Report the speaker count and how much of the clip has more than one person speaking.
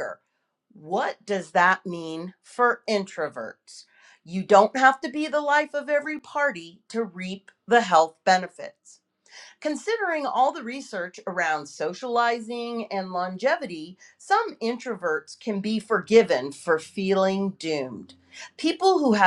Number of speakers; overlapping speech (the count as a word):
one, no overlap